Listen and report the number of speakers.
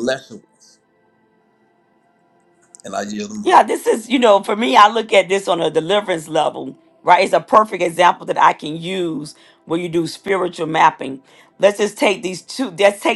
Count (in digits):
2